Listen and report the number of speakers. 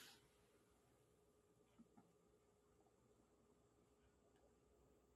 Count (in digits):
0